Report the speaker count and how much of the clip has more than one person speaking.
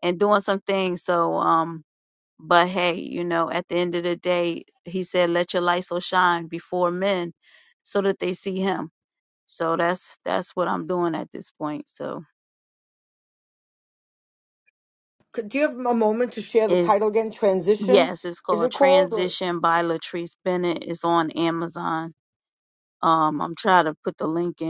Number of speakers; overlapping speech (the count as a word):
two, about 4%